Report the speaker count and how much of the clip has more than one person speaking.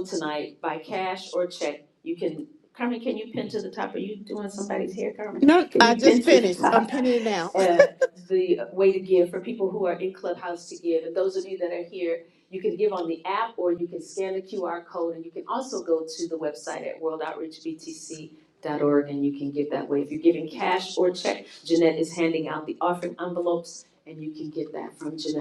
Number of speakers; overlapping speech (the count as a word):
two, about 6%